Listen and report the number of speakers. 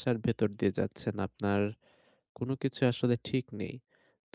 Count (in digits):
1